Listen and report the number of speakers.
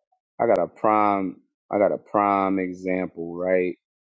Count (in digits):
1